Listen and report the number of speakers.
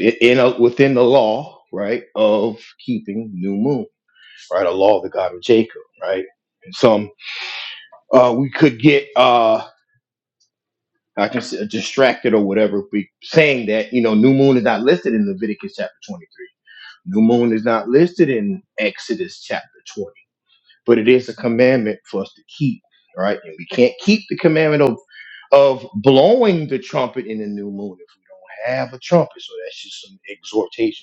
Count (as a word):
one